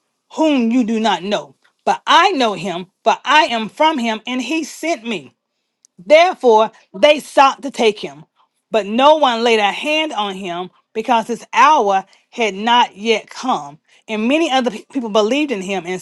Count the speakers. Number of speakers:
one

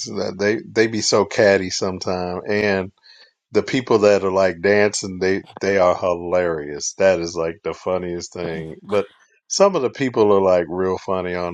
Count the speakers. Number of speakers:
one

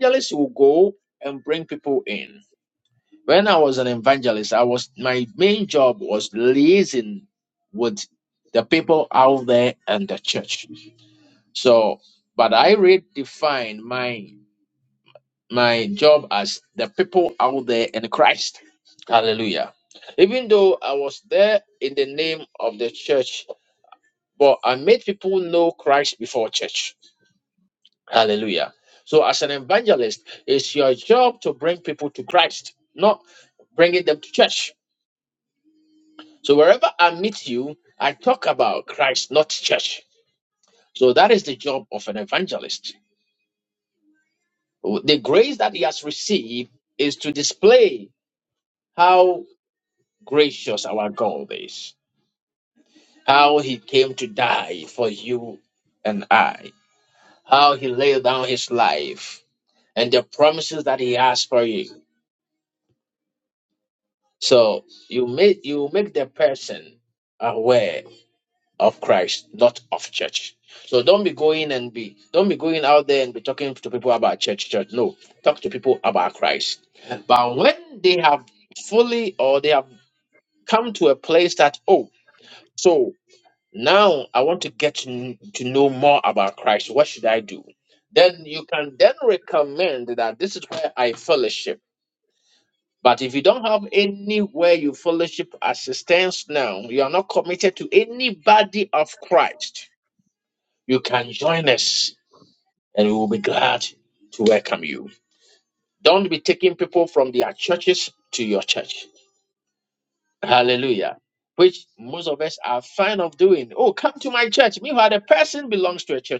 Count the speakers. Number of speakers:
one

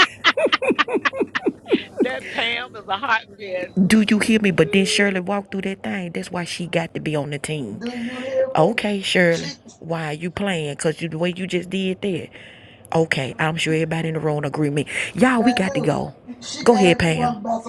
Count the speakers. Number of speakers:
three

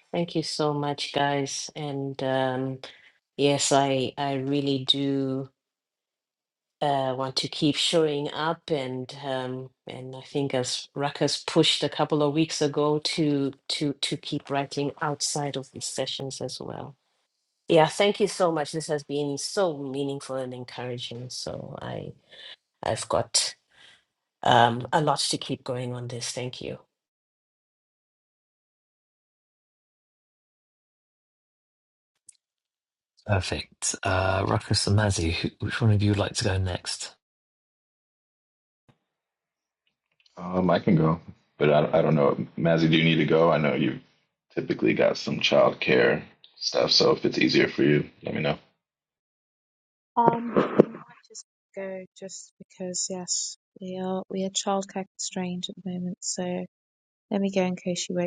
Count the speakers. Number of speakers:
four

